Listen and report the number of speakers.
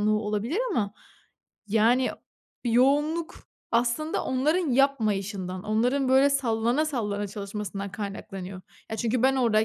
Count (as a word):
one